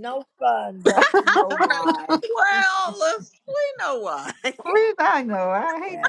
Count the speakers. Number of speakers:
three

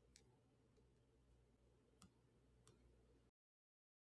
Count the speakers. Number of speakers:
zero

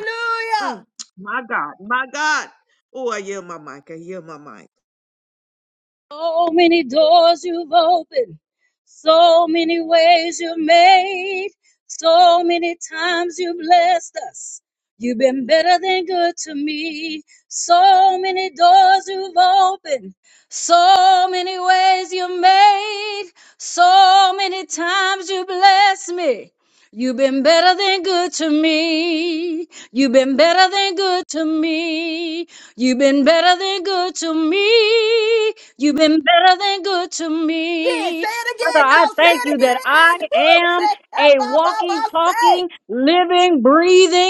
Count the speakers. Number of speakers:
three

